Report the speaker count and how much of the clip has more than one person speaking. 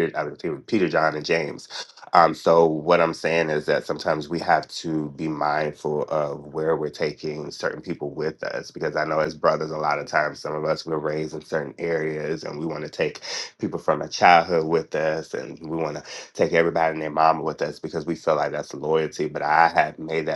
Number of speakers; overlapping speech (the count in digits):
1, no overlap